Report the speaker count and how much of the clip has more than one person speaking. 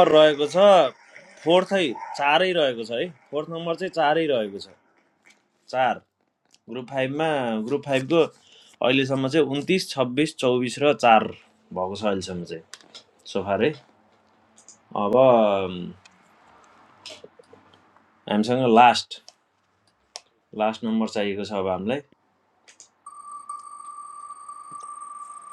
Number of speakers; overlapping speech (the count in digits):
1, no overlap